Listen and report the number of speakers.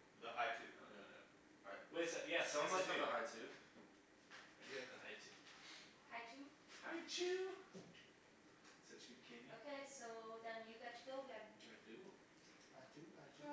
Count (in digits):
4